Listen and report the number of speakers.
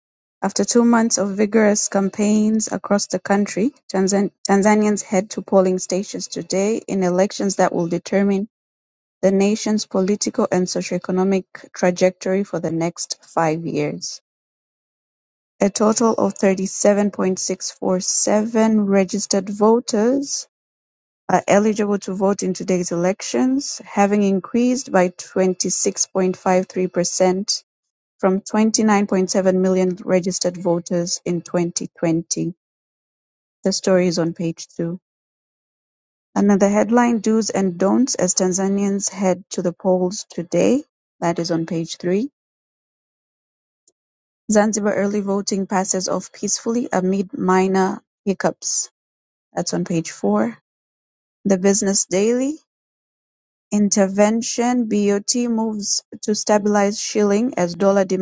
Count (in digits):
1